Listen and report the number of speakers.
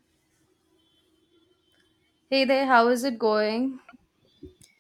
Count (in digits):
1